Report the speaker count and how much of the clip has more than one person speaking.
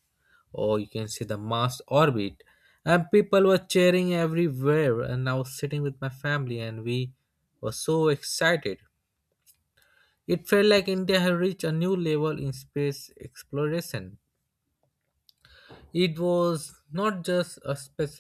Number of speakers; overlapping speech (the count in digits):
1, no overlap